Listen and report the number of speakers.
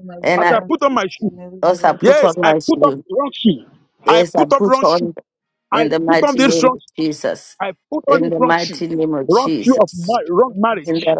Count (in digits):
3